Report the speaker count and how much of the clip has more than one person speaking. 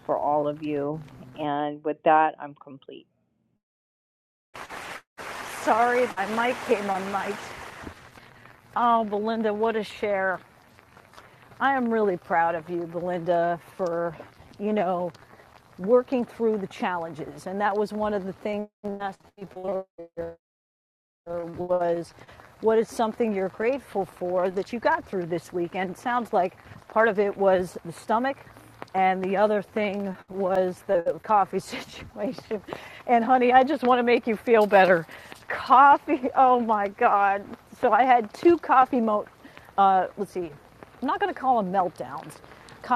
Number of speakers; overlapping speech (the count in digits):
2, no overlap